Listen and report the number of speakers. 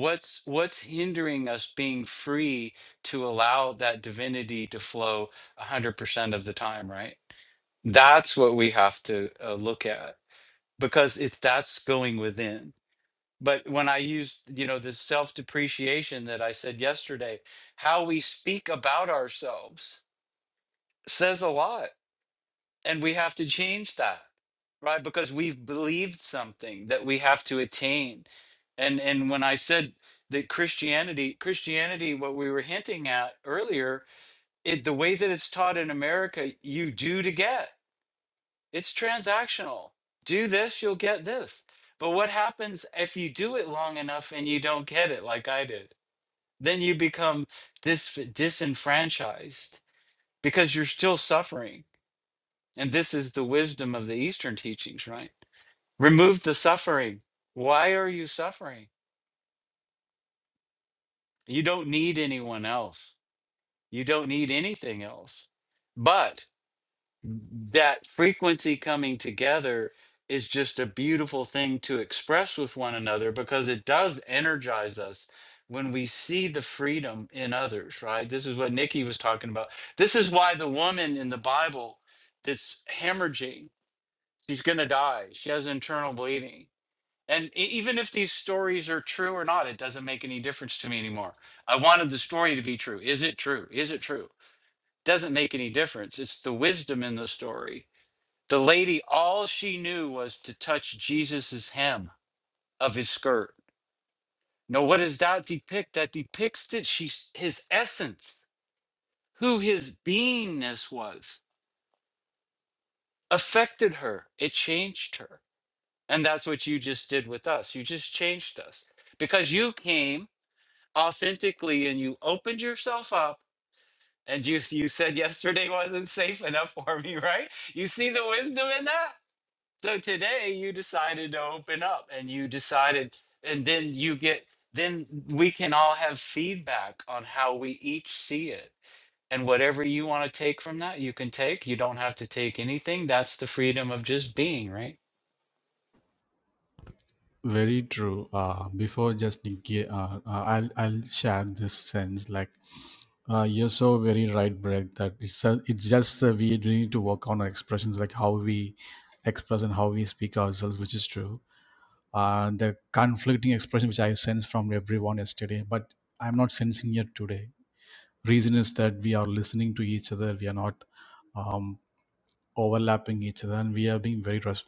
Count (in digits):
2